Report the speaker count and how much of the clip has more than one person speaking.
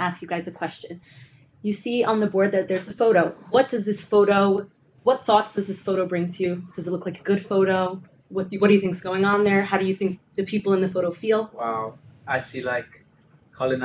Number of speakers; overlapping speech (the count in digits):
2, no overlap